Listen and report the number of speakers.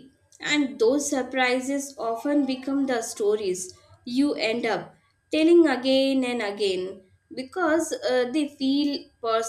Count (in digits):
1